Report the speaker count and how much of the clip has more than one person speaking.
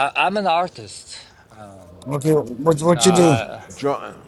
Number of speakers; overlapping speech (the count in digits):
3, about 17%